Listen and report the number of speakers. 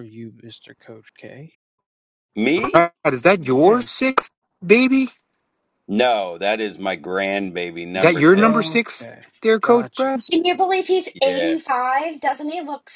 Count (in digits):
4